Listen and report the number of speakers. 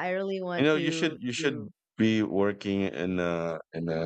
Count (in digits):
2